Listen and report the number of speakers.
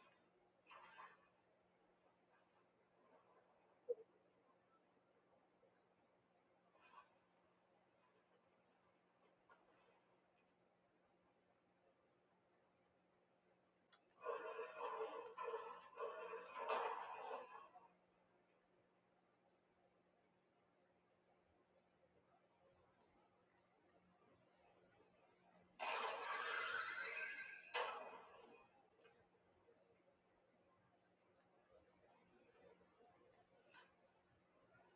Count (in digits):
0